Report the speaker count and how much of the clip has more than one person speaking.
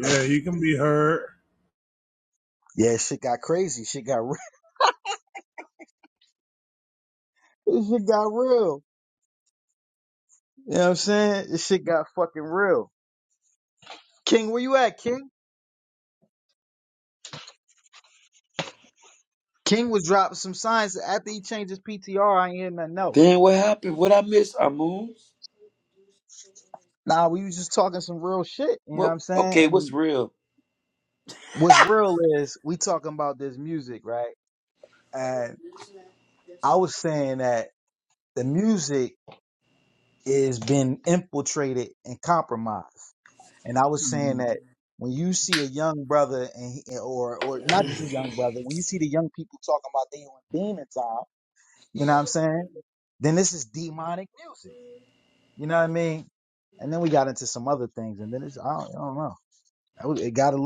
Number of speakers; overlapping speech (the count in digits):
3, about 2%